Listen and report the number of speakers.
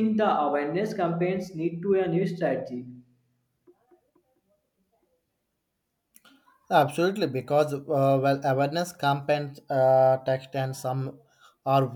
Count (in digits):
2